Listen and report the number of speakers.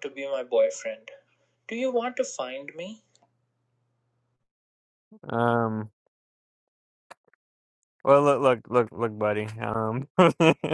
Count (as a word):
two